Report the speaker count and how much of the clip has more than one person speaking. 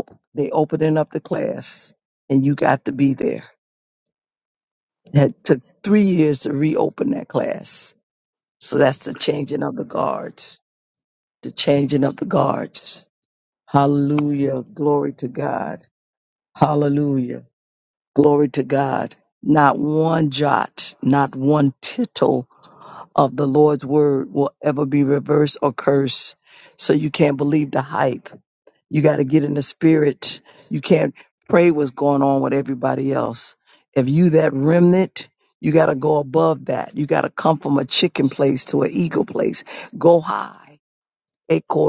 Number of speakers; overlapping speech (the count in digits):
1, no overlap